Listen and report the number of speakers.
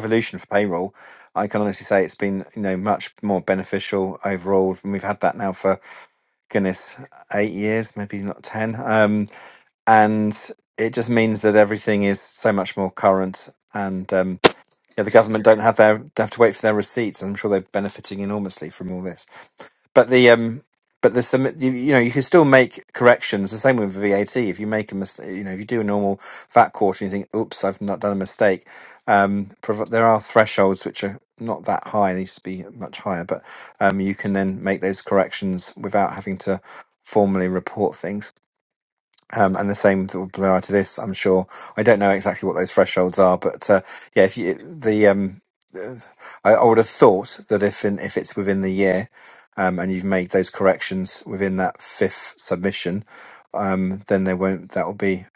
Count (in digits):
1